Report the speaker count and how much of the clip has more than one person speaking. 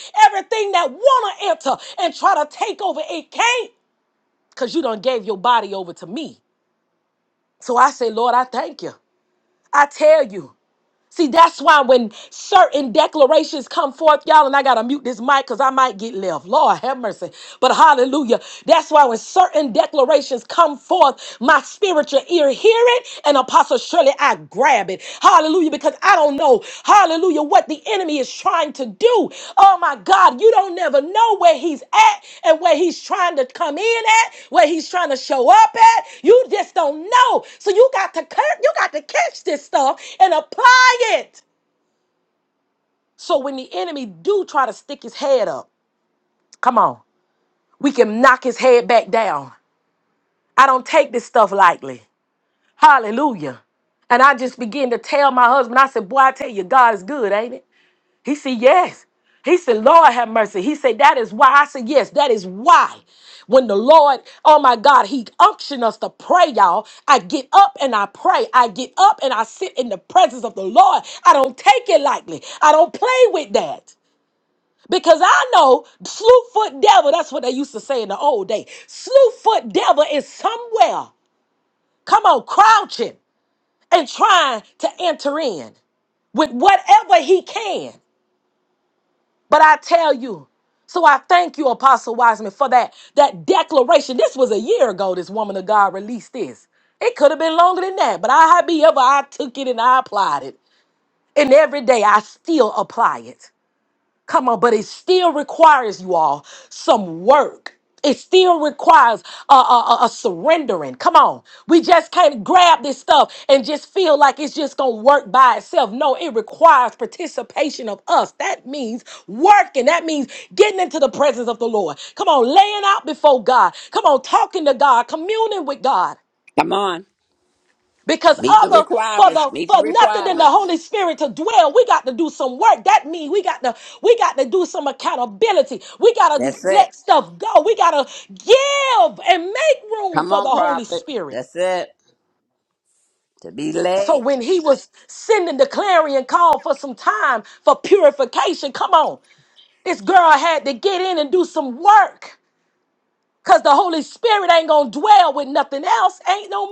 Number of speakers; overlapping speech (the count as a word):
two, about 2%